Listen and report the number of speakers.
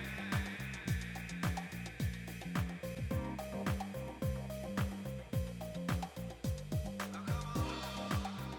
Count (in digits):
0